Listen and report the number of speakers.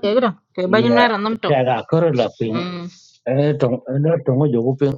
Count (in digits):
2